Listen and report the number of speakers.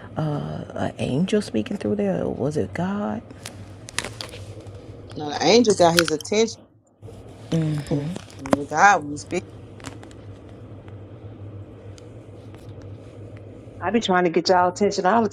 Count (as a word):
three